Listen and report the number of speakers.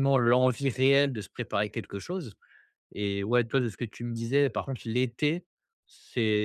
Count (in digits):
1